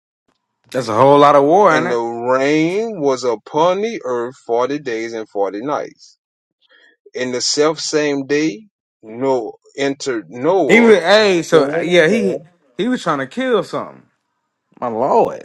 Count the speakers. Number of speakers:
two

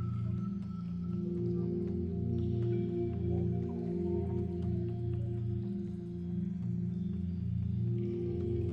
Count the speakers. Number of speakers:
zero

